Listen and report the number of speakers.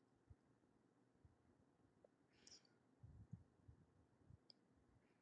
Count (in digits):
0